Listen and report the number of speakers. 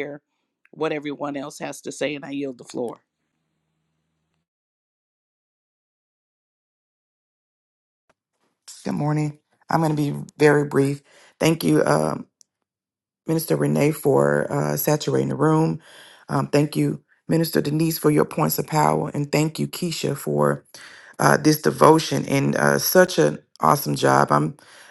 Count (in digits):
2